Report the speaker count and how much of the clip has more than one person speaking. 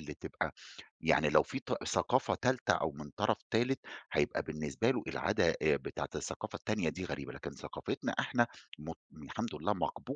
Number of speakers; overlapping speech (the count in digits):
1, no overlap